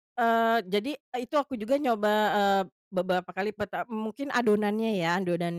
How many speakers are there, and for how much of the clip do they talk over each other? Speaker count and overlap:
1, no overlap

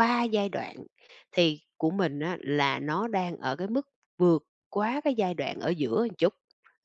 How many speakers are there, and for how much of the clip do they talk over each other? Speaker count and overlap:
1, no overlap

